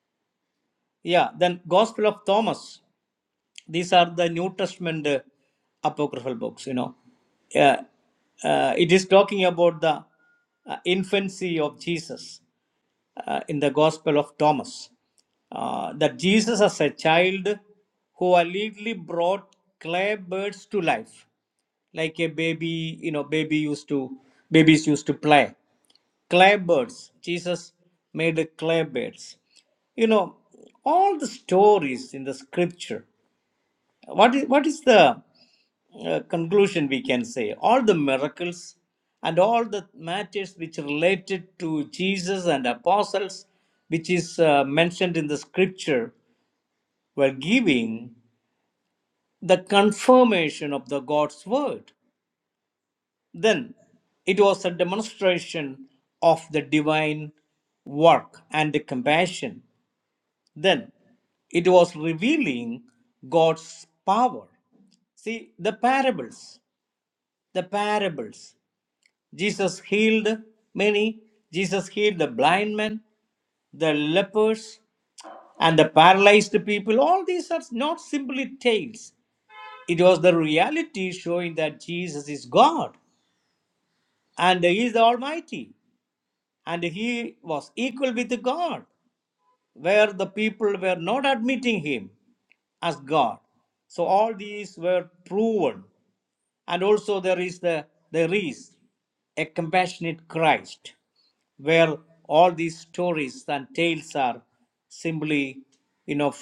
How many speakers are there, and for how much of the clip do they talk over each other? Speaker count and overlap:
one, no overlap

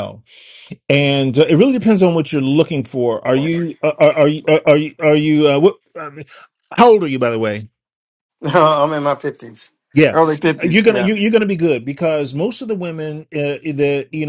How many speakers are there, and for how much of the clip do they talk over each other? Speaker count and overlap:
two, about 3%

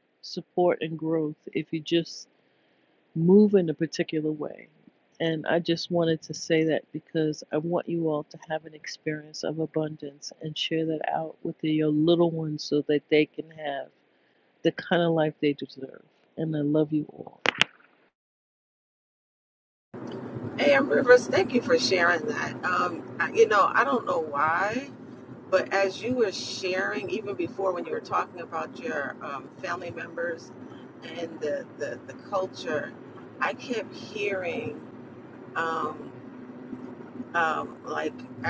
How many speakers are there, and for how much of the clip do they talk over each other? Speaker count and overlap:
two, no overlap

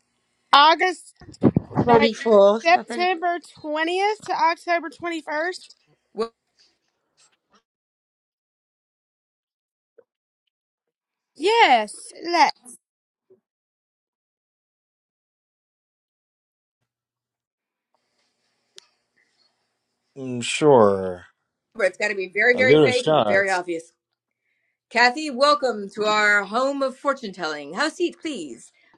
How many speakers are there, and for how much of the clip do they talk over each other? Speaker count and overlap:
four, about 6%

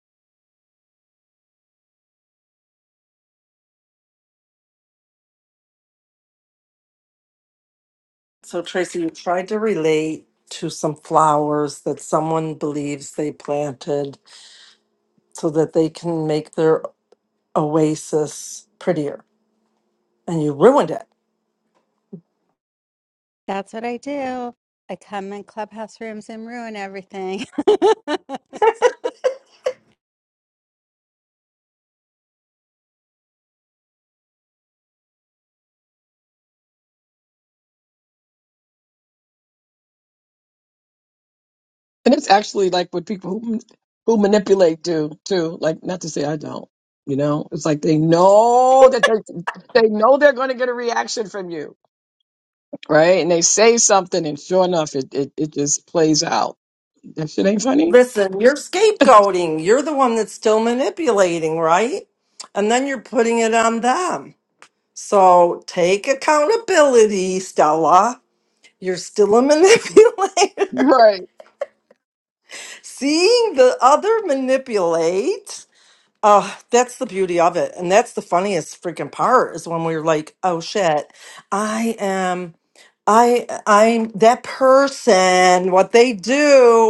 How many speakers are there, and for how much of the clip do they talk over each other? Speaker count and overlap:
three, under 1%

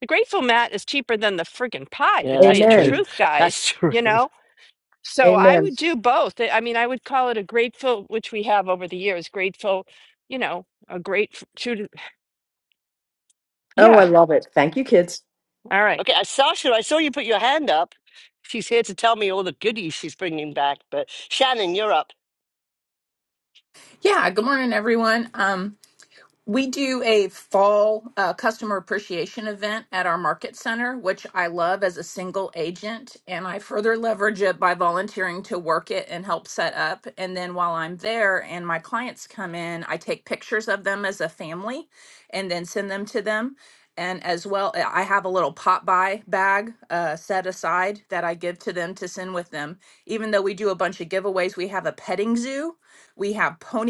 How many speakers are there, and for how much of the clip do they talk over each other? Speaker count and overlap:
four, about 4%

